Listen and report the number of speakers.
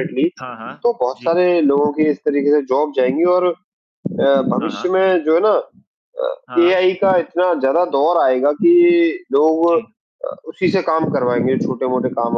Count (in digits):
2